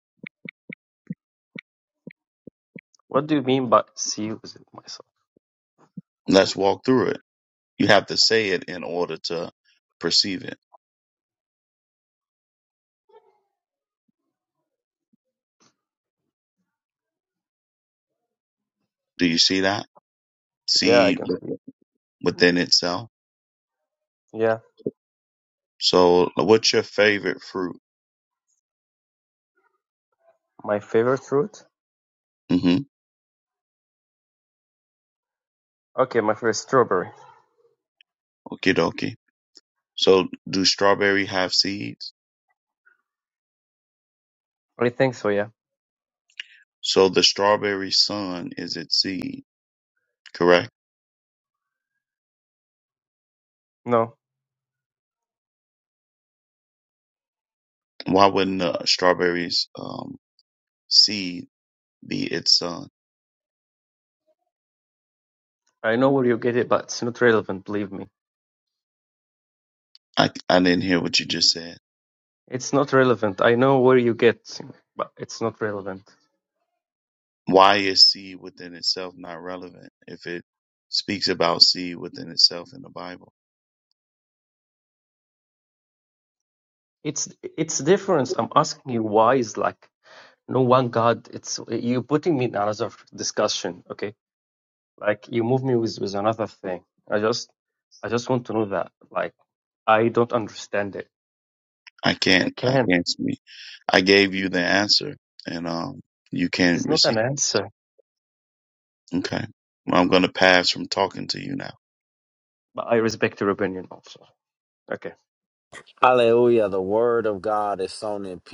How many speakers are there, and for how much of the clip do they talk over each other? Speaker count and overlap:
3, about 1%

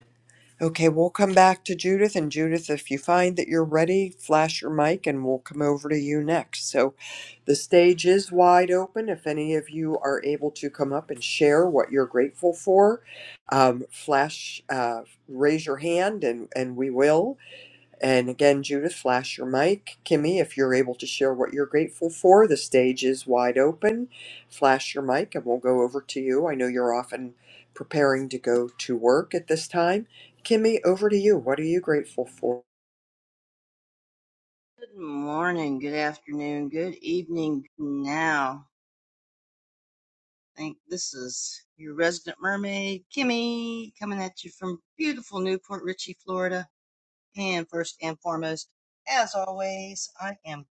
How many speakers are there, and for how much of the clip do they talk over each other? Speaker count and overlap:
2, no overlap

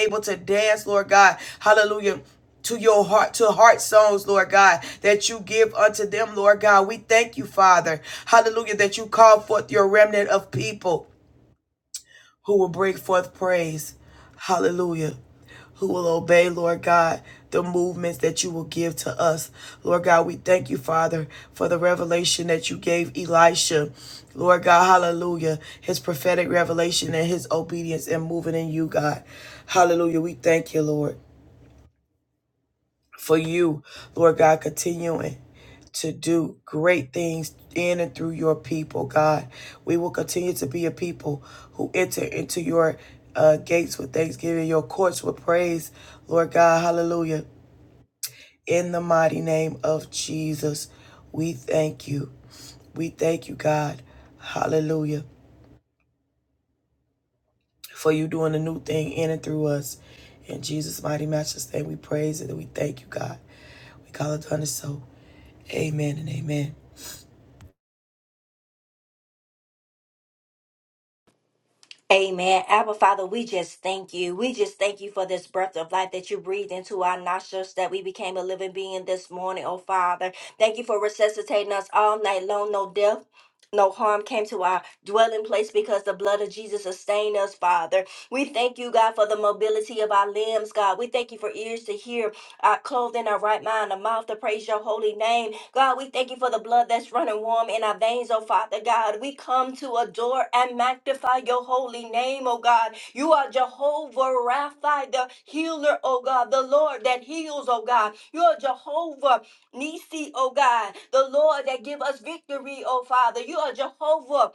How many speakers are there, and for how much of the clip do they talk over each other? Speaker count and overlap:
2, no overlap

